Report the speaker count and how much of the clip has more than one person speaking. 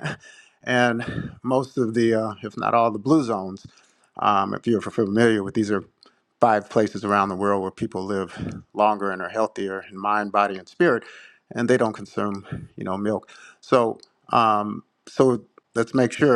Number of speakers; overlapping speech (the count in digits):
1, no overlap